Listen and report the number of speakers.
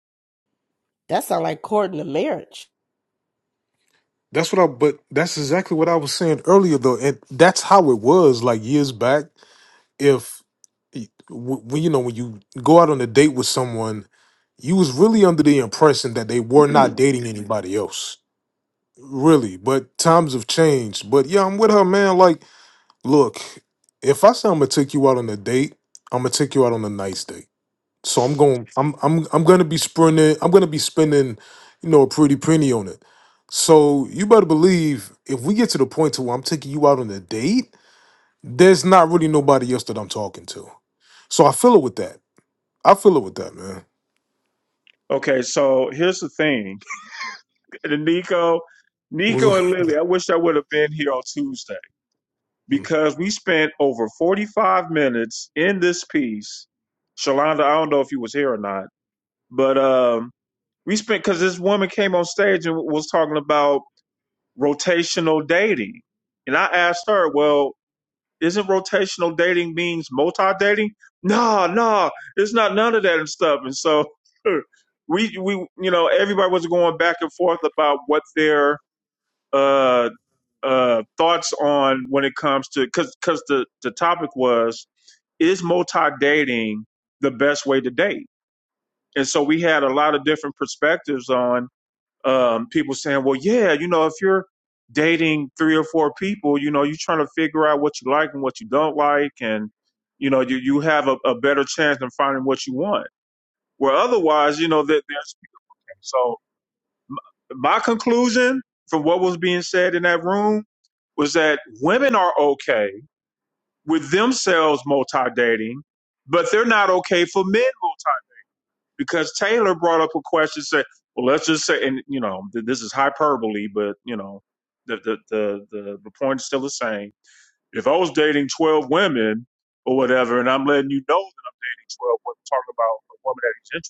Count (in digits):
3